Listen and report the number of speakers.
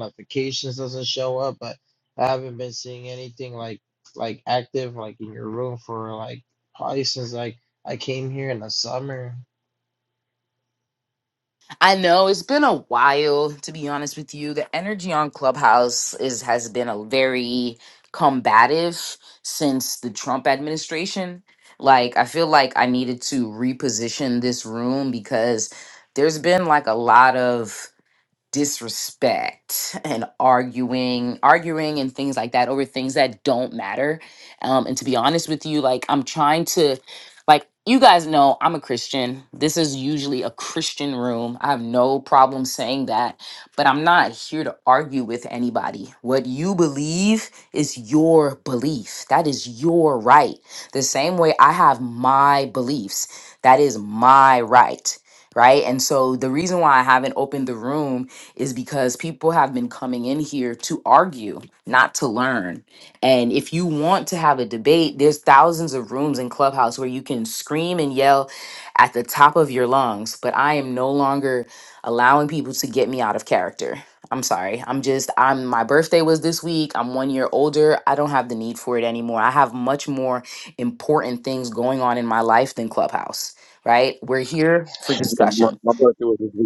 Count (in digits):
3